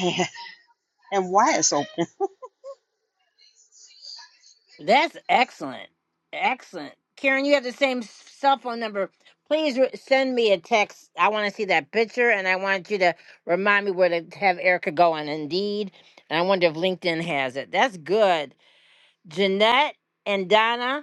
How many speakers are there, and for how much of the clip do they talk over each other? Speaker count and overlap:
two, no overlap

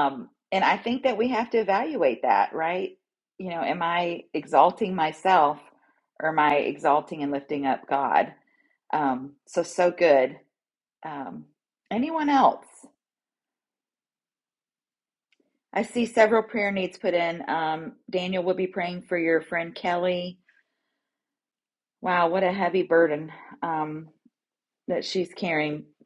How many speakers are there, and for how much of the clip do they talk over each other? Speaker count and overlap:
one, no overlap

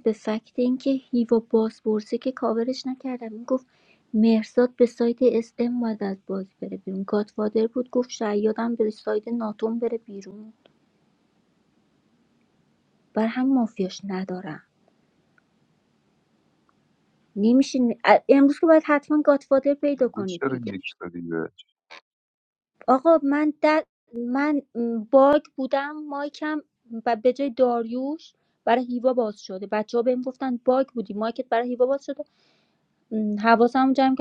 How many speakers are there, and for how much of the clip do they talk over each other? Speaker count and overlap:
two, about 2%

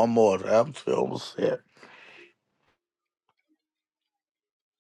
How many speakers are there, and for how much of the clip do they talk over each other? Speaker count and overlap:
one, no overlap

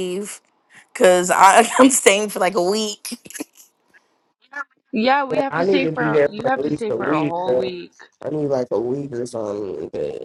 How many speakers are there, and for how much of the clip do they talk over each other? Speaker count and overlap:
three, about 24%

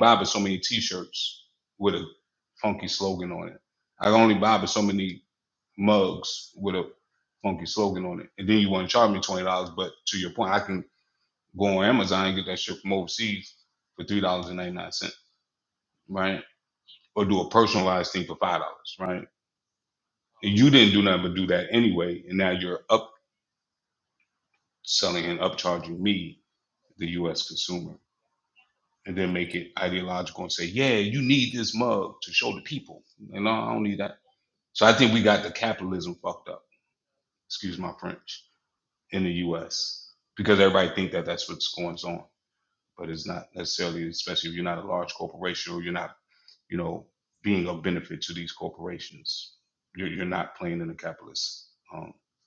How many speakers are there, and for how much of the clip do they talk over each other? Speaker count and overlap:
one, no overlap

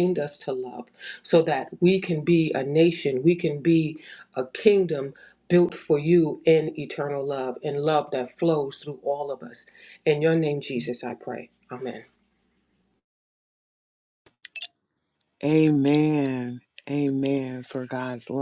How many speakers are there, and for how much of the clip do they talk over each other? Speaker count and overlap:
two, no overlap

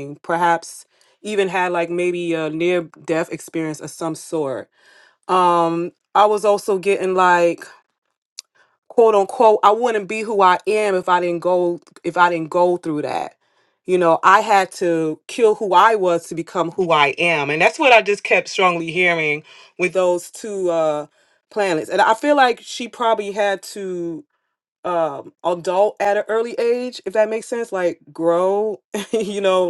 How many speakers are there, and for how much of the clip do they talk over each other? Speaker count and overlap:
one, no overlap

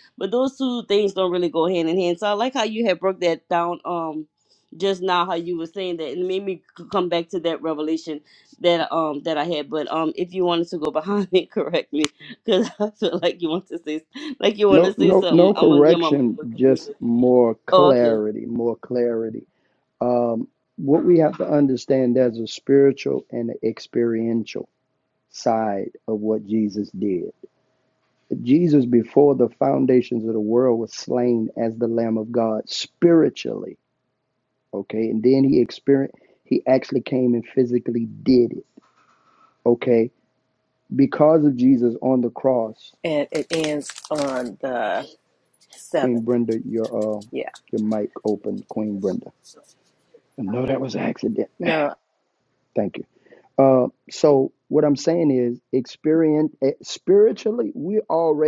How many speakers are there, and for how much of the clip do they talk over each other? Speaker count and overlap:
three, about 5%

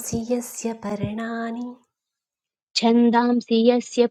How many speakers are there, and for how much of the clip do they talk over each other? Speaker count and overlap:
two, no overlap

